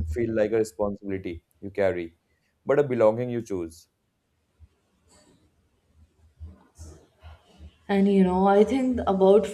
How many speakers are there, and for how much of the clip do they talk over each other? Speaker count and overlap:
2, no overlap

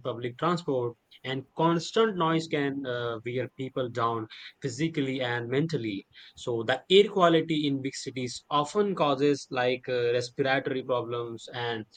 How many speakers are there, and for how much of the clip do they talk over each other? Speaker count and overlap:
1, no overlap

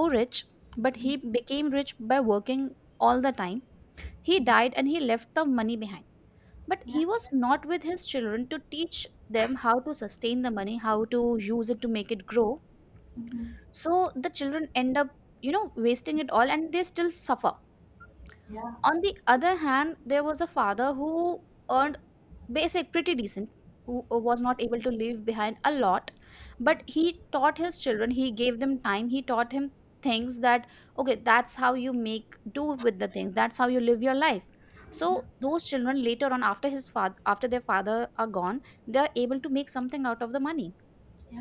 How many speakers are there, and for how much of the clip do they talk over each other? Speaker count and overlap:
2, about 1%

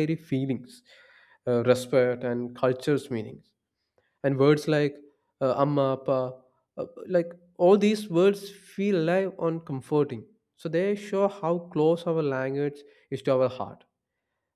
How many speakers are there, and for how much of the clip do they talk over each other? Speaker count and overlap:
1, no overlap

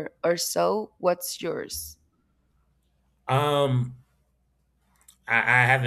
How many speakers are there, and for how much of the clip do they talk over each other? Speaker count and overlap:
2, no overlap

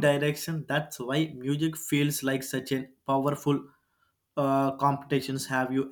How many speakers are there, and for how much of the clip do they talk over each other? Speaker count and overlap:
1, no overlap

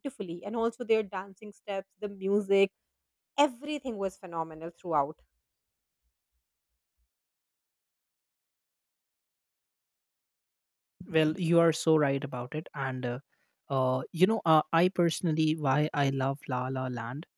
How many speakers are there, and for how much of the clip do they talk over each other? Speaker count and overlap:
2, no overlap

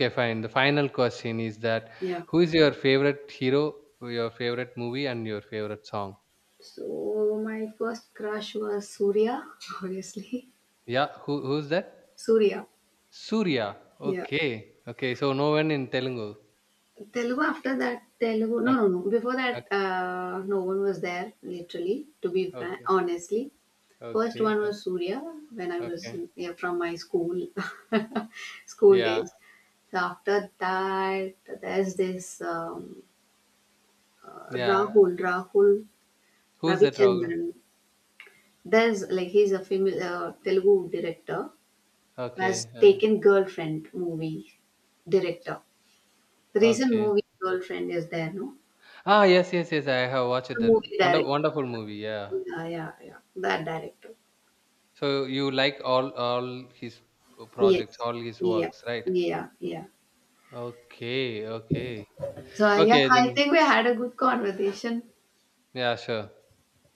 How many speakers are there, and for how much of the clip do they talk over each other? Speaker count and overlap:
2, about 10%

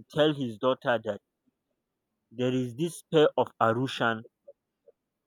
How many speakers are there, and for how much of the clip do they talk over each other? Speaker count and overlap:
1, no overlap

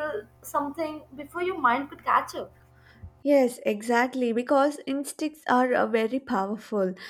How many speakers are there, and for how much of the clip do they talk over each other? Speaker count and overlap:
2, no overlap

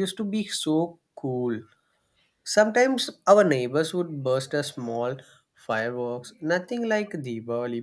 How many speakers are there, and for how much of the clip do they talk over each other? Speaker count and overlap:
1, no overlap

